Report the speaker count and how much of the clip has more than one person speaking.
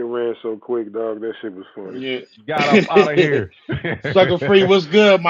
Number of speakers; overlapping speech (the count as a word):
three, about 3%